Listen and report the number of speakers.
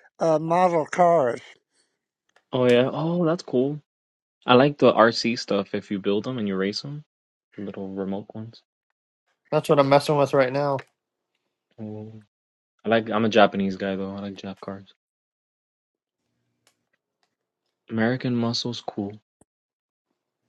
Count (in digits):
3